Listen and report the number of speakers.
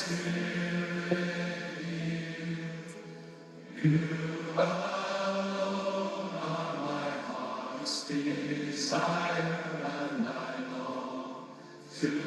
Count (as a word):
zero